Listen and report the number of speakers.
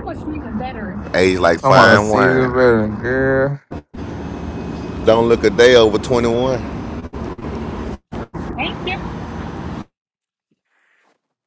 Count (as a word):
three